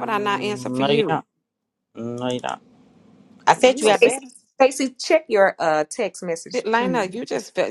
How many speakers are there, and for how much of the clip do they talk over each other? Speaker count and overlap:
3, about 30%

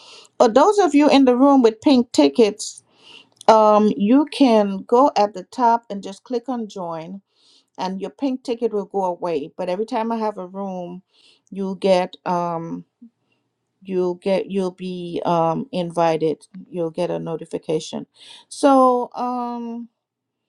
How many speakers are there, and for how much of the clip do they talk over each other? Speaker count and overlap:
1, no overlap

